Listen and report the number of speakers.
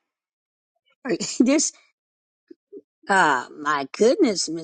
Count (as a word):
one